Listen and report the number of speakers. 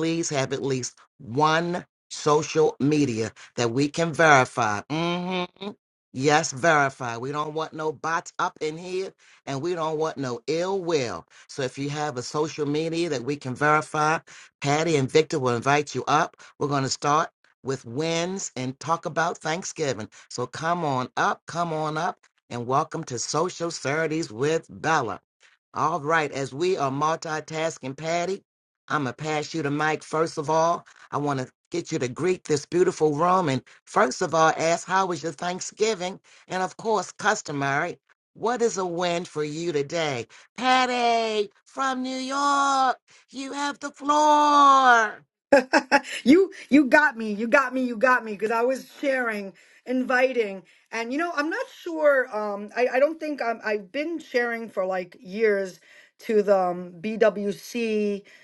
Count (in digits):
2